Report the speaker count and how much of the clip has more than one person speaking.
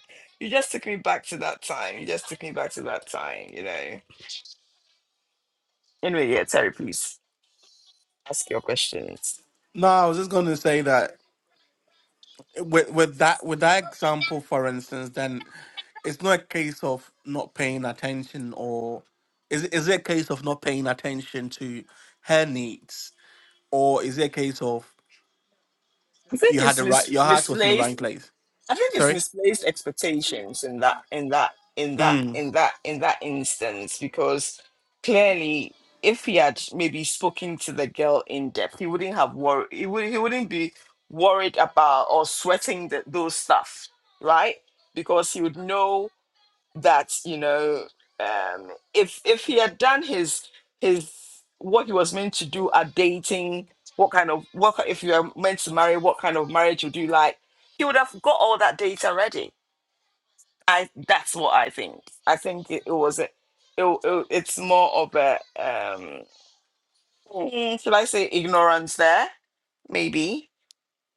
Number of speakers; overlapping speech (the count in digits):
2, about 3%